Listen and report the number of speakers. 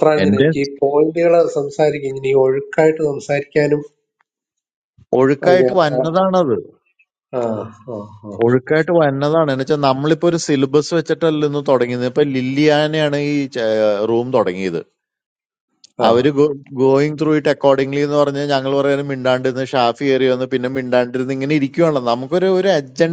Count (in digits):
2